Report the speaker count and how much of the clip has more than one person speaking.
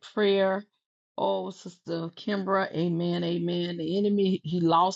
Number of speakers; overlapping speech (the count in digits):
1, no overlap